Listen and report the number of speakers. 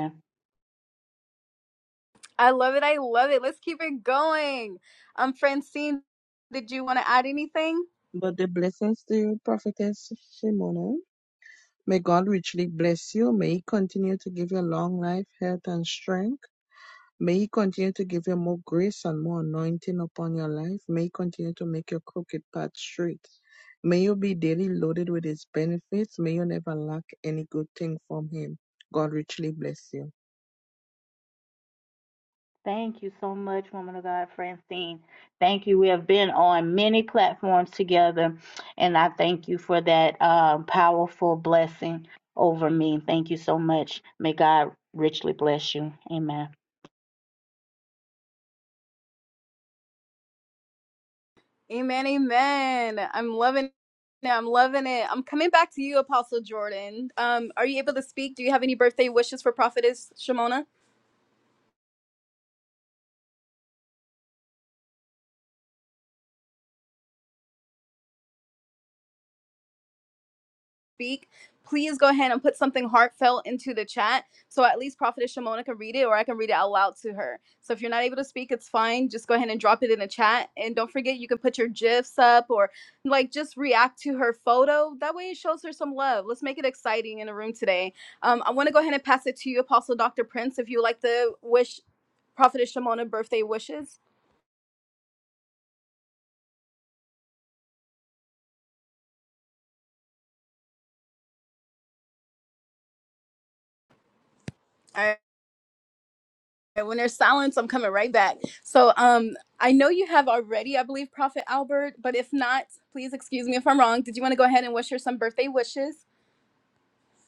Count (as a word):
three